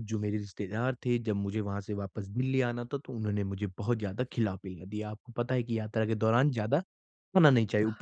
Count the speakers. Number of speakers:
one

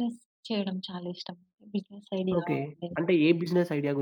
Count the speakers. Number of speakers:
two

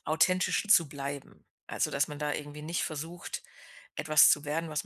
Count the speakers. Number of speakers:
one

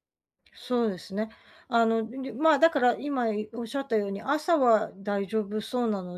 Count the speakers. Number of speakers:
one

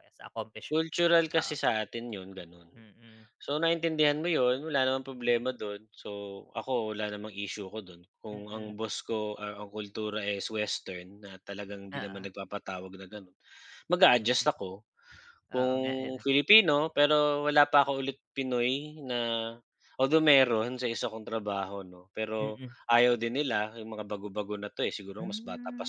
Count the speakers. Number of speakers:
two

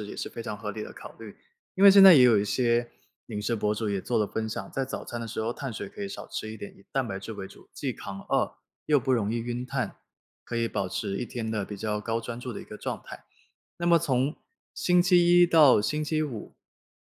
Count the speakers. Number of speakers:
one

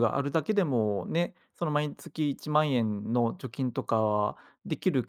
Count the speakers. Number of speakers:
one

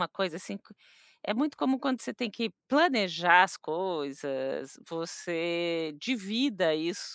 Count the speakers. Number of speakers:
one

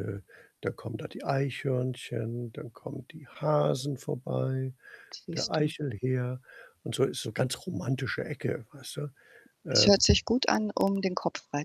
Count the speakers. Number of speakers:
two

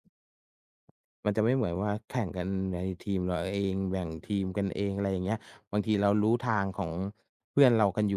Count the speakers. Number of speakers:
one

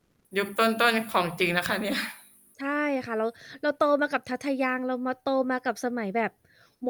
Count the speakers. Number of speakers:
two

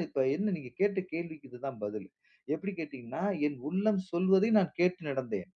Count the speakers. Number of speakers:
one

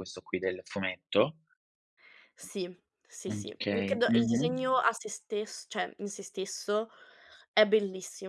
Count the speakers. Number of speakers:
two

